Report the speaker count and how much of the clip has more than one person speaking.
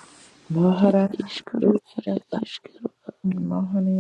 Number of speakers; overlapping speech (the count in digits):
2, about 21%